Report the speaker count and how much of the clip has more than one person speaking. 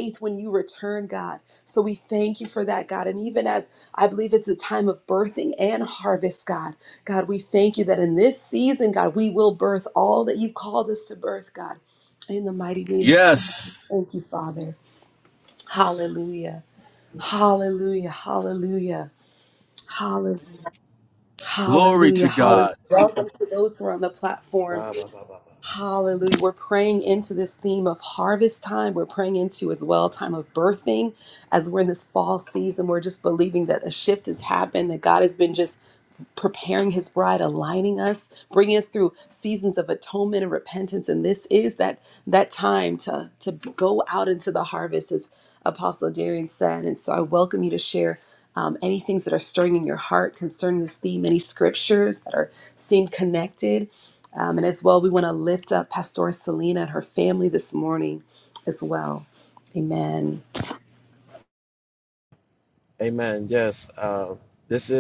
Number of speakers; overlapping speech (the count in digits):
3, about 2%